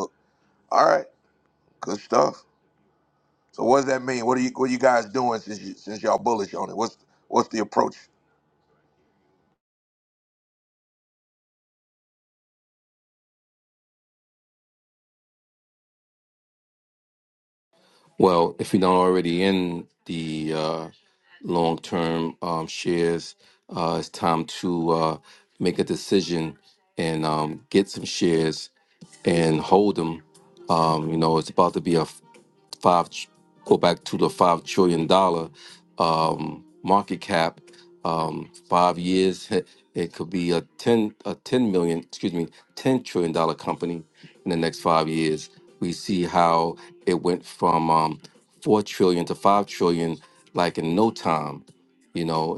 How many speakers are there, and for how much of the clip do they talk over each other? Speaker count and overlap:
two, no overlap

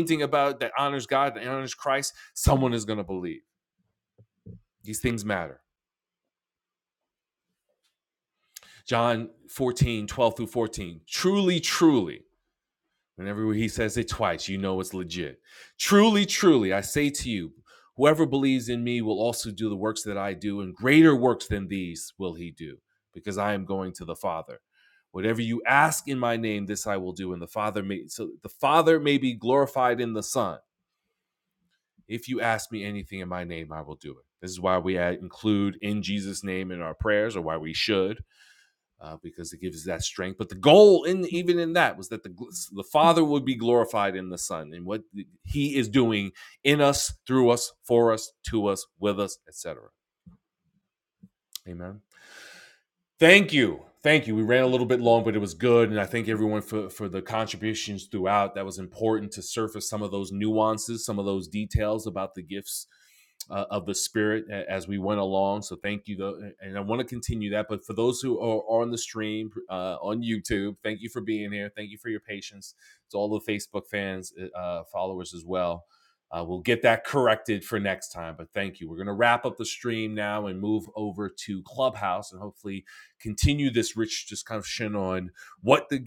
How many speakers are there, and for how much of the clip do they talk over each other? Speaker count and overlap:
one, no overlap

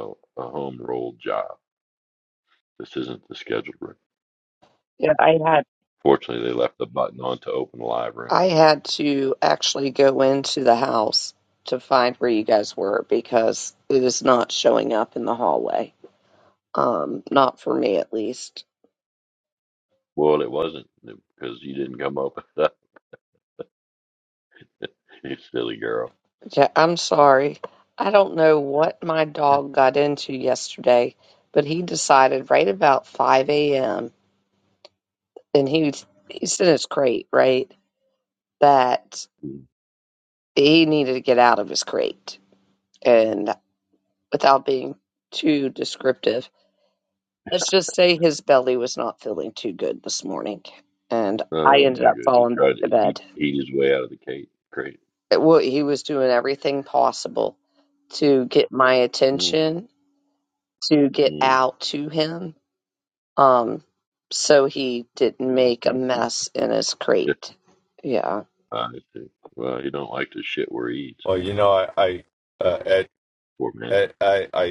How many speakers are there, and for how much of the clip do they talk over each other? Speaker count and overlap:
three, about 3%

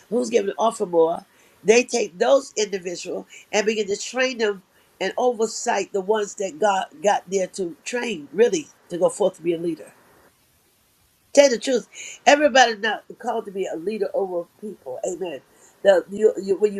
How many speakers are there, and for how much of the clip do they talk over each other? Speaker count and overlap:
one, no overlap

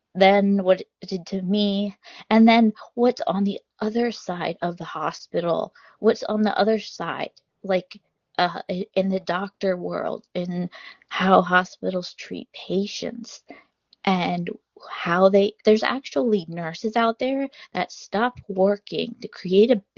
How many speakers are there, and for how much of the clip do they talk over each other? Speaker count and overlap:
one, no overlap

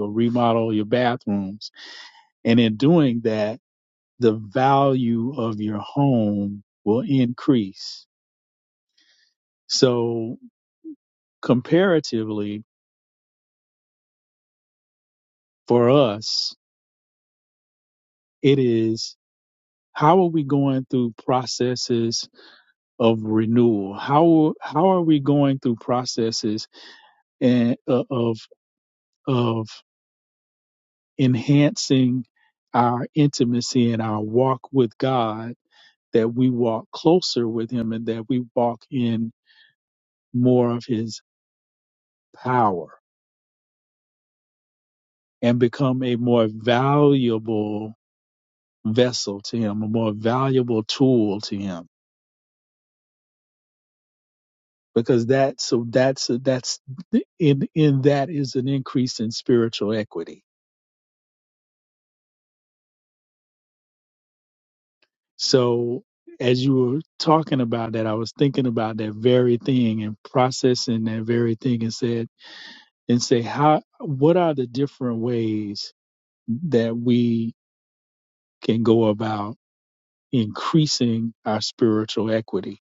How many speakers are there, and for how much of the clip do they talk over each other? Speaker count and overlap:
one, no overlap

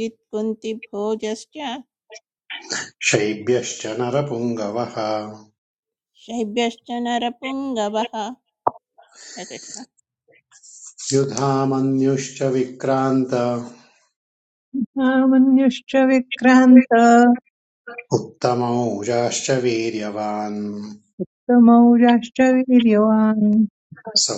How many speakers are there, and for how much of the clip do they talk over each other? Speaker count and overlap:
three, no overlap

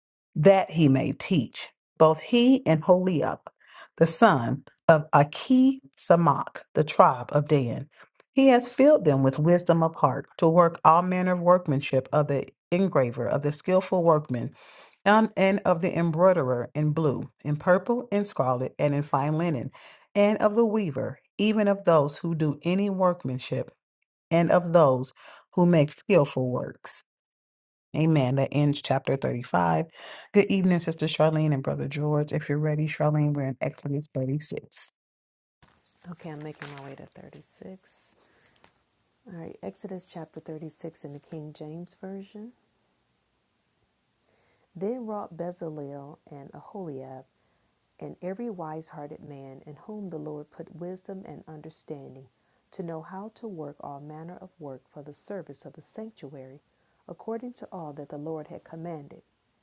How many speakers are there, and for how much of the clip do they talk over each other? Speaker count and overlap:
two, no overlap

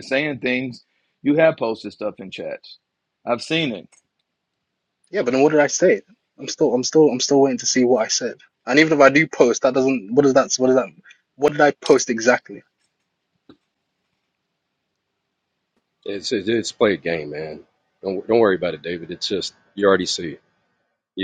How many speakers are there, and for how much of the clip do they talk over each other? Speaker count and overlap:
three, no overlap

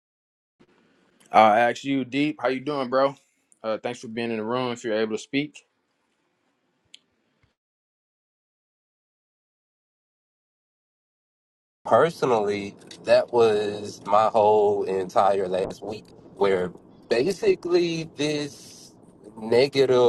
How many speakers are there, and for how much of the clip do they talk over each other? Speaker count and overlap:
two, no overlap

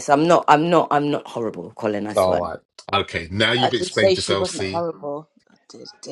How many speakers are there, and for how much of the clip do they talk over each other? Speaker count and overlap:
three, about 24%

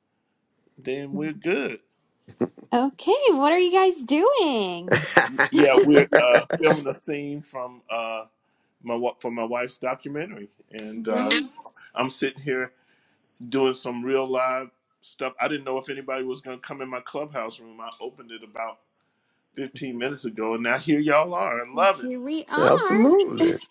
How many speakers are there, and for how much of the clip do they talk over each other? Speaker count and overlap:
three, about 5%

